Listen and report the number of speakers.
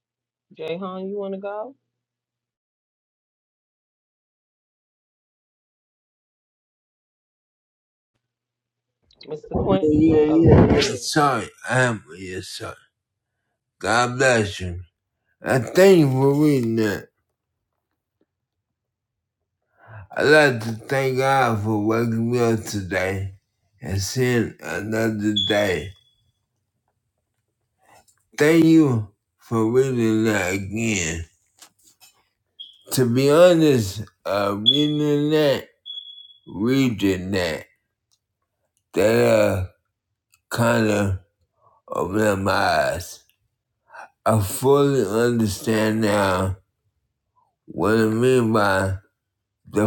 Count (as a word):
two